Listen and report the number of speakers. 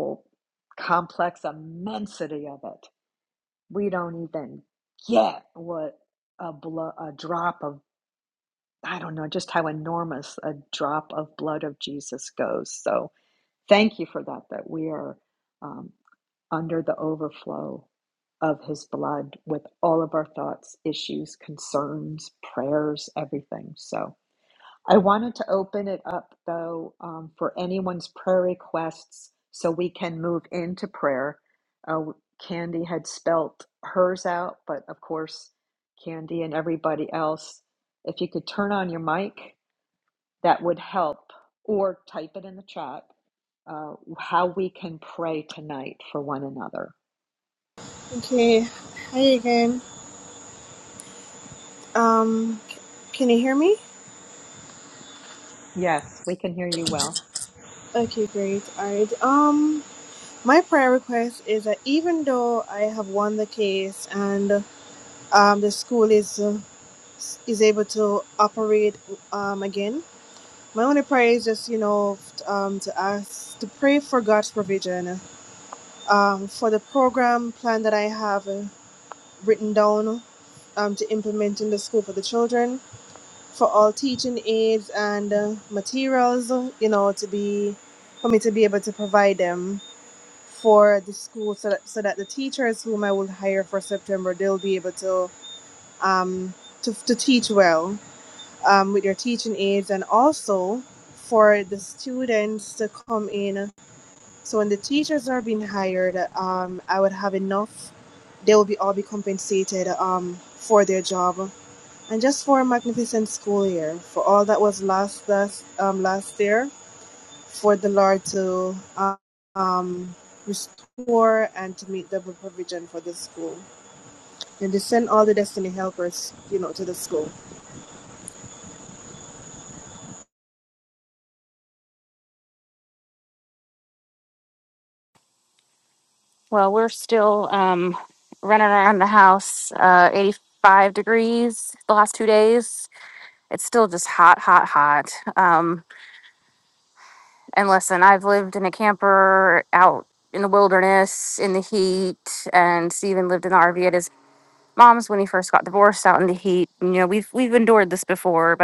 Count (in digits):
3